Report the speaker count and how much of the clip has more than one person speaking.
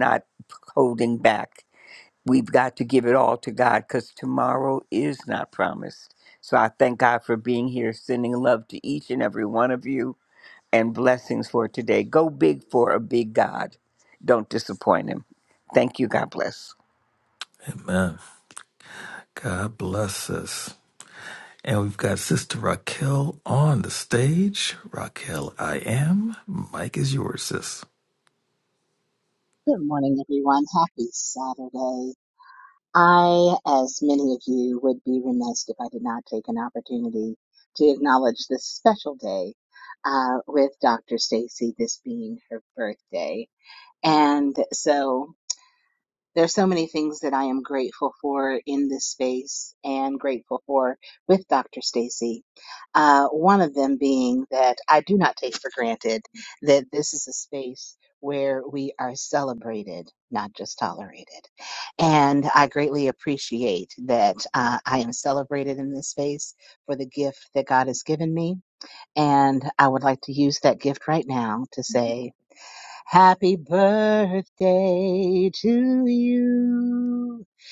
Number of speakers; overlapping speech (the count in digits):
3, no overlap